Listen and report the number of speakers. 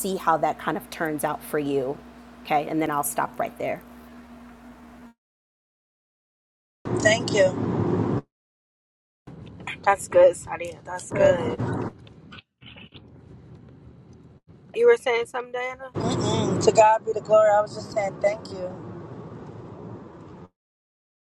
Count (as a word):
three